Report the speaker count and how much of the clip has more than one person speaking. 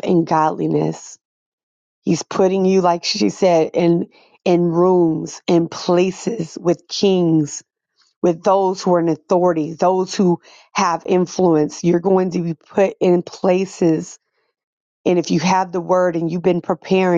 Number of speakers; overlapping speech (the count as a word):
one, no overlap